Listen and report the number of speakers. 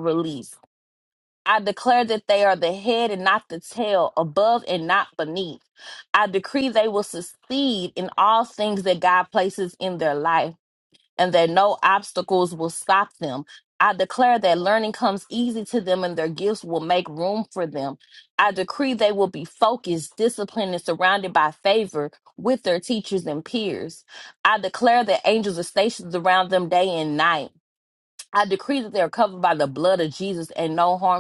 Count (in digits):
1